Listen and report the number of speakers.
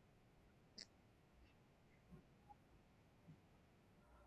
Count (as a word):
zero